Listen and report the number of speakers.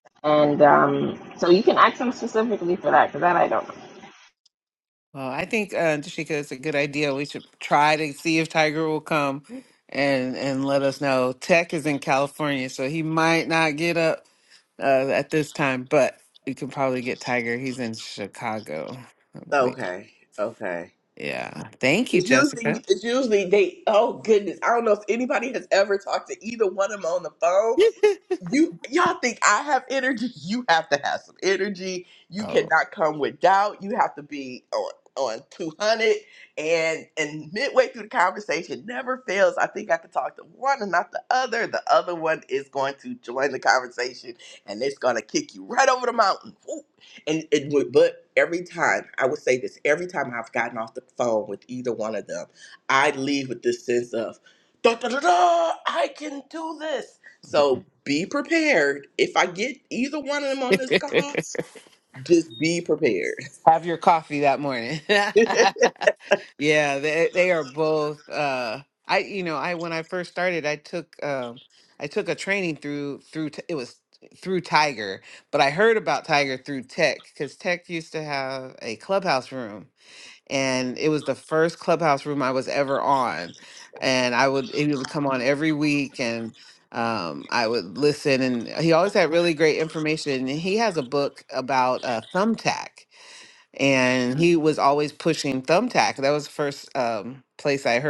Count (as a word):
three